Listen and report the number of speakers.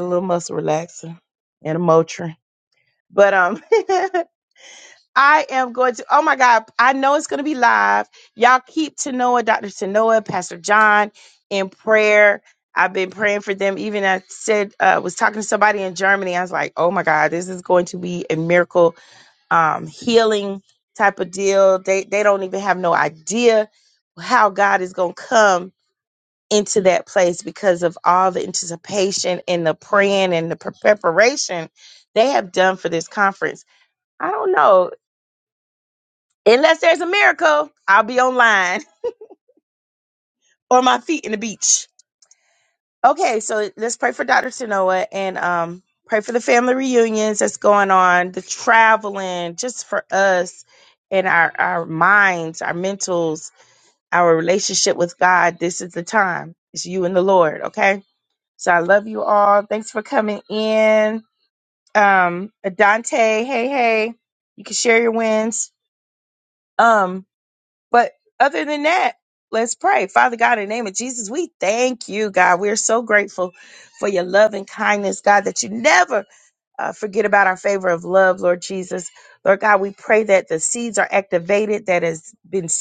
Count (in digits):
1